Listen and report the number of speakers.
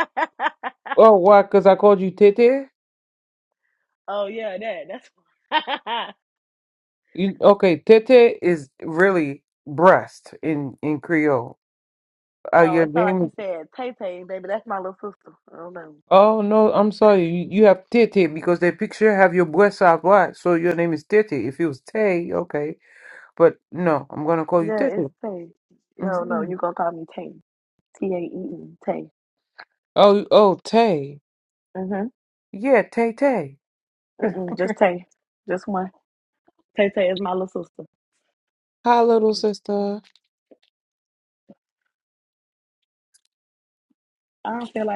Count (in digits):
2